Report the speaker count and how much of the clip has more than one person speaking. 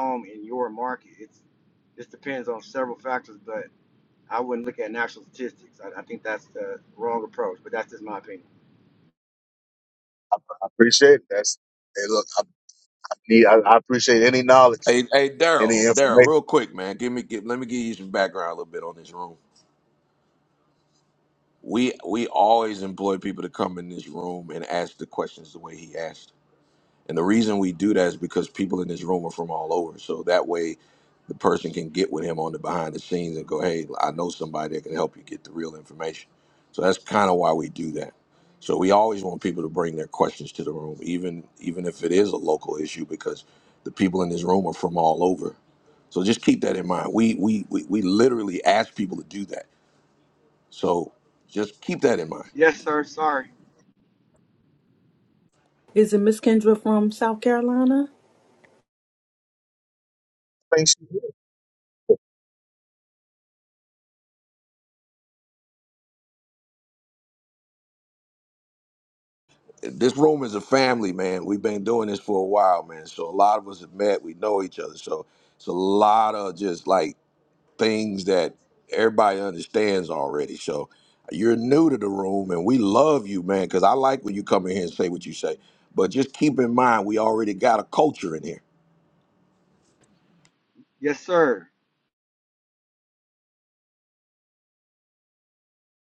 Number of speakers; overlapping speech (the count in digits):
4, about 1%